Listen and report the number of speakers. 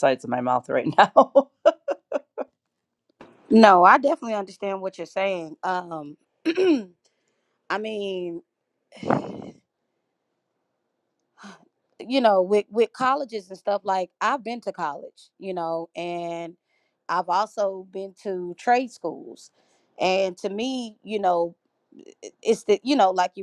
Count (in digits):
2